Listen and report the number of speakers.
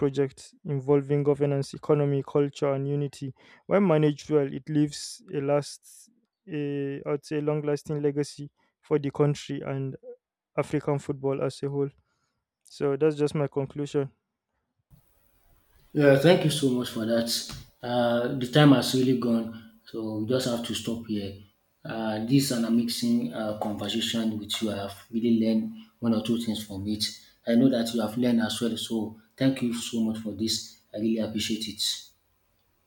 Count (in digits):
2